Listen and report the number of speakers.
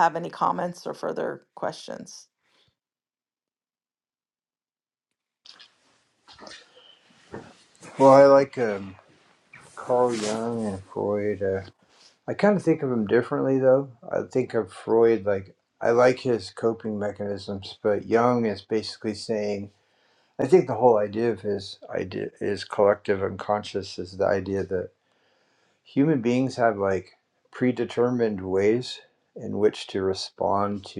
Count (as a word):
two